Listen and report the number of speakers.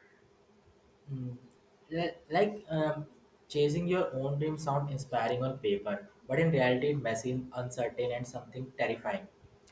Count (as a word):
one